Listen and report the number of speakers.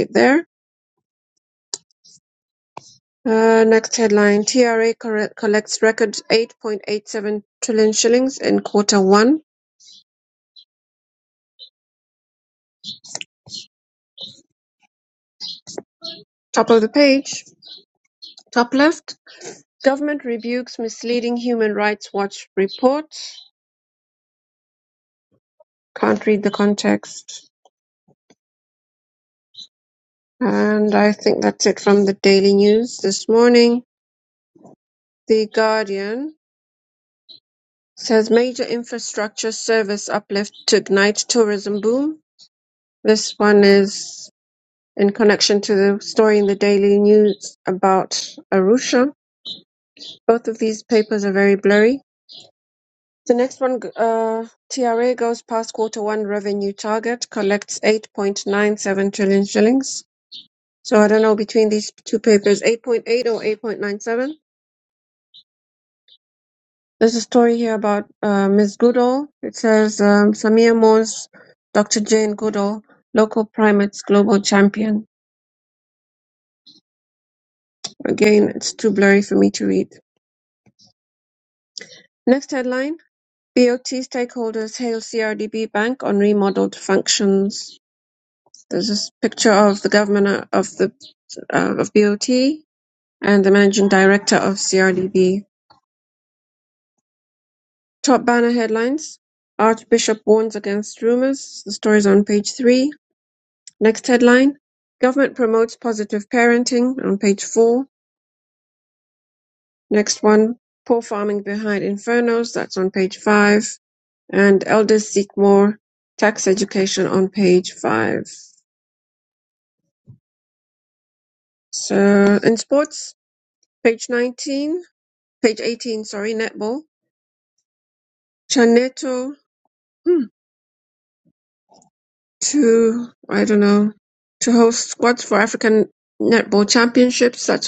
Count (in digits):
1